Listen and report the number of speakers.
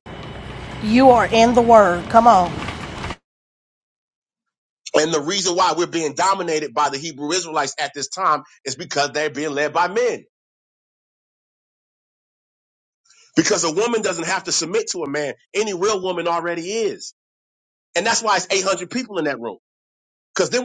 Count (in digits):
2